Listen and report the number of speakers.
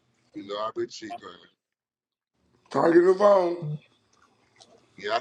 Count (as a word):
two